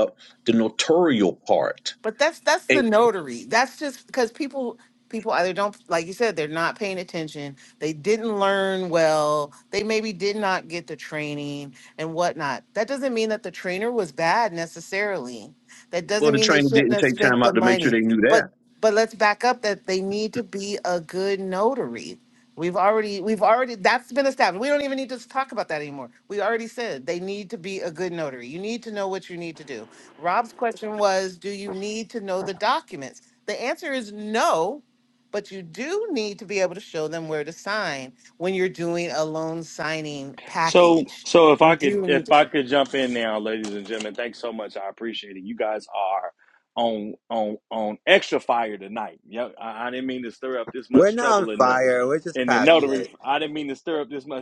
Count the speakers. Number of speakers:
4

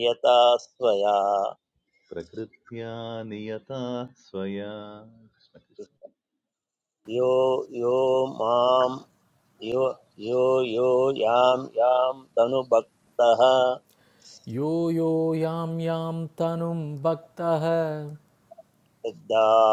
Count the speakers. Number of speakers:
3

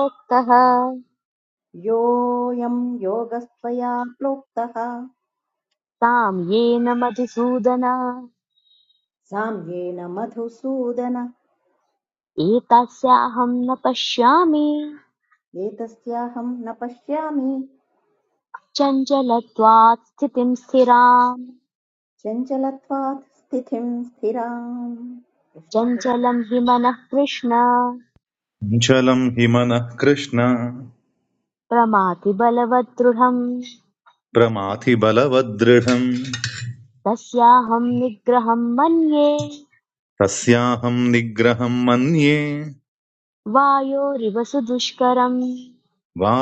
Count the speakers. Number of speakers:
3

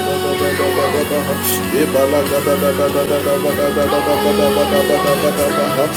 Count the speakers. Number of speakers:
0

